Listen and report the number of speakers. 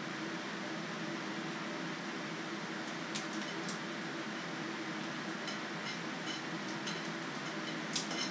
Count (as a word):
zero